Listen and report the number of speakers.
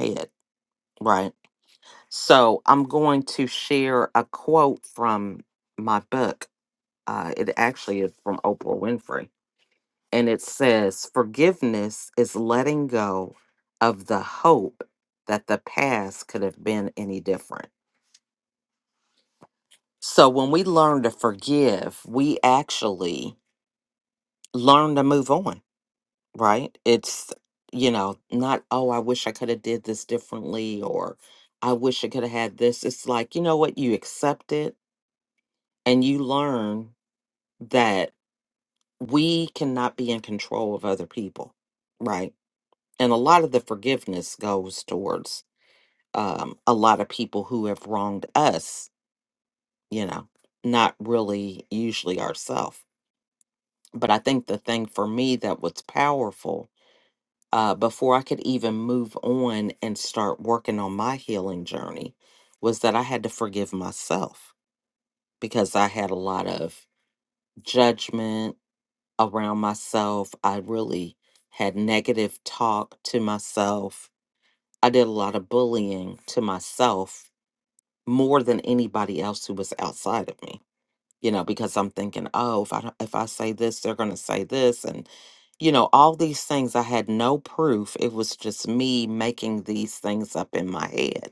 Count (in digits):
1